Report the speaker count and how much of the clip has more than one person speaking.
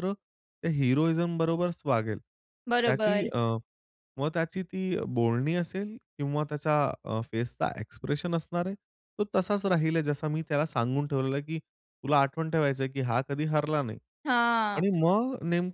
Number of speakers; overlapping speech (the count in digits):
2, about 3%